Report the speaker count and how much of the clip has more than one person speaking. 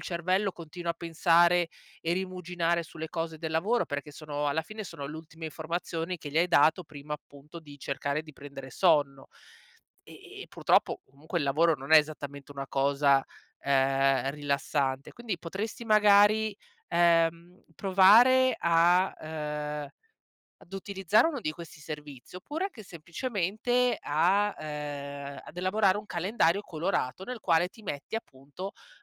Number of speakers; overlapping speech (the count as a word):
one, no overlap